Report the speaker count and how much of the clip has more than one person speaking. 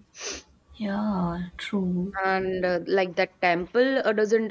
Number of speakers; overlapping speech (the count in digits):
2, no overlap